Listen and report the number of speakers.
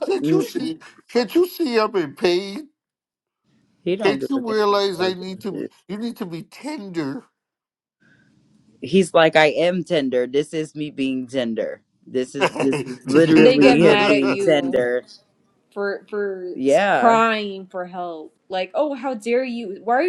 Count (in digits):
3